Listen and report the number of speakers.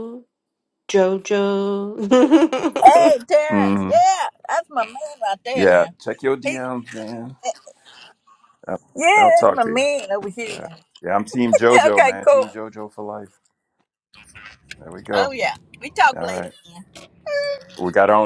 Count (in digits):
3